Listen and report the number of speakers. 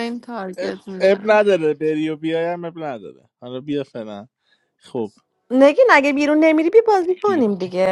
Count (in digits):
3